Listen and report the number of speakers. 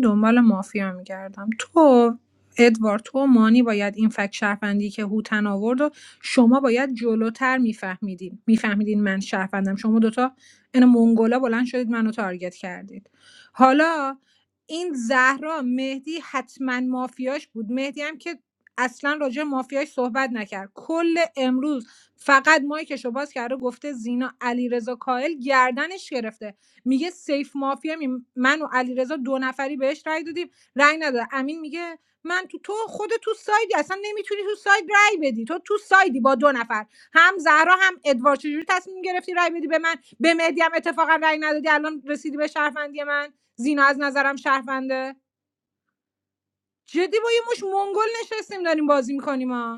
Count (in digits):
1